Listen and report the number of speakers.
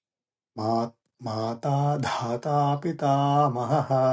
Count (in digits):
1